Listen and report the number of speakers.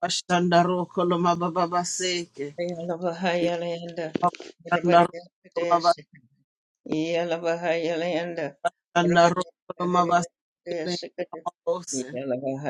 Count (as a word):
two